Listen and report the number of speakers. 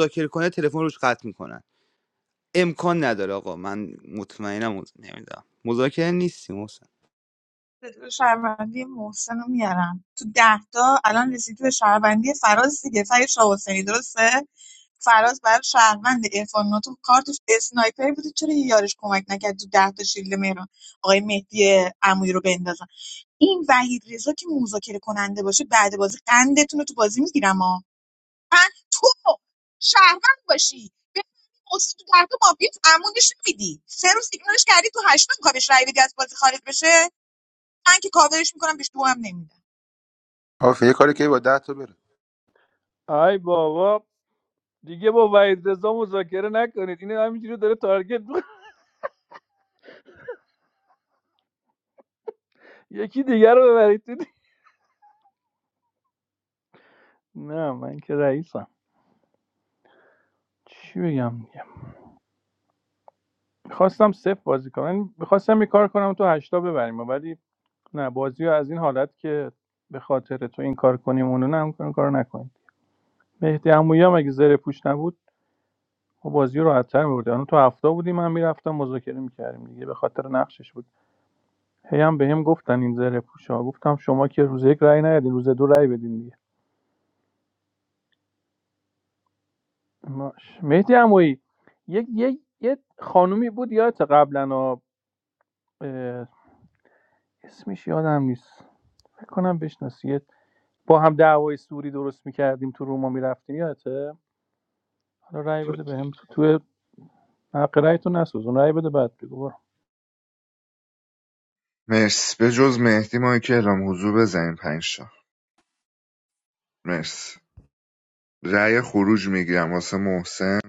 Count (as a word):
five